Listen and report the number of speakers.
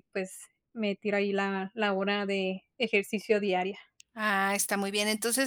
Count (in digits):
2